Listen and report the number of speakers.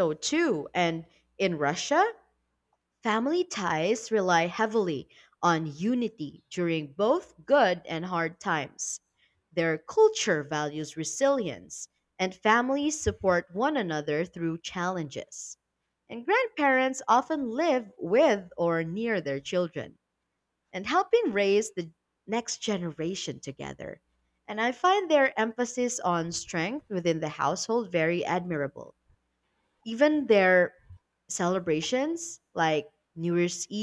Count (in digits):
1